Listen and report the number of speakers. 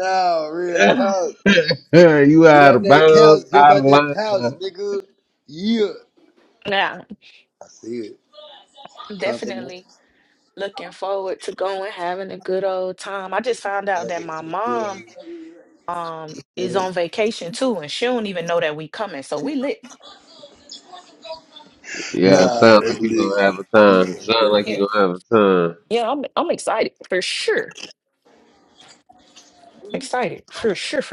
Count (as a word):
three